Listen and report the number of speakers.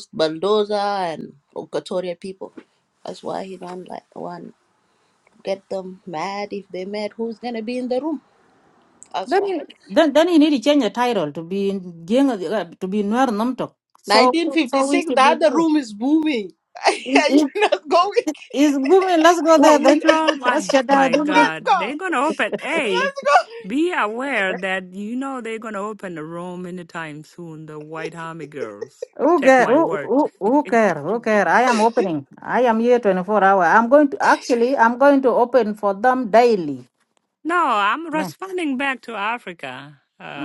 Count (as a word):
three